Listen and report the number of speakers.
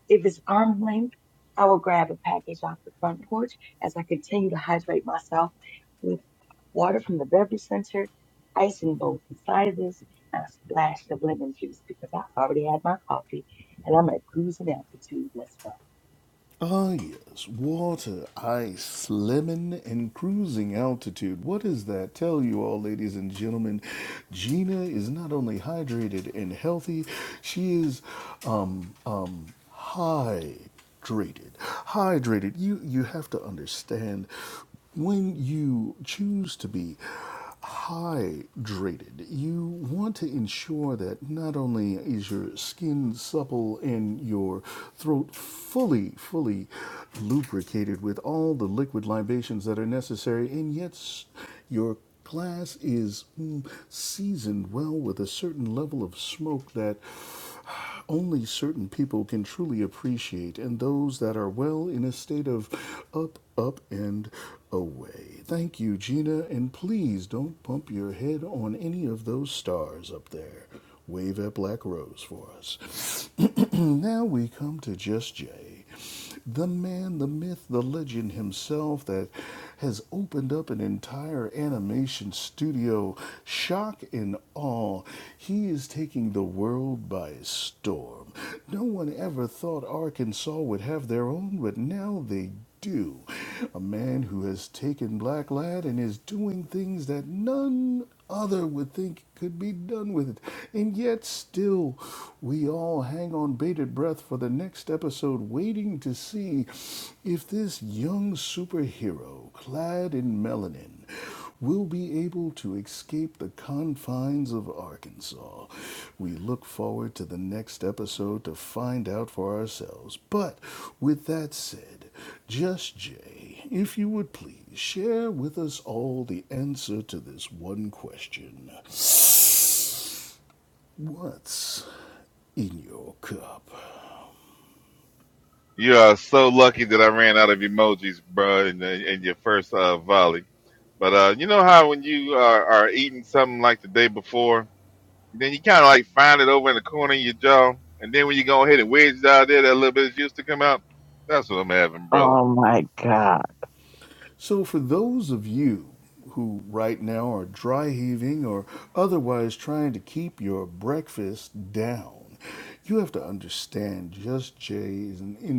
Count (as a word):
four